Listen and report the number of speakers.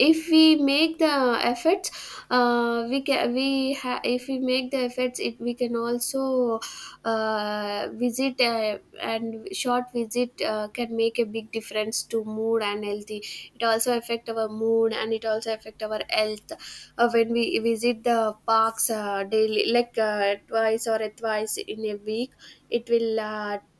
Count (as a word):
one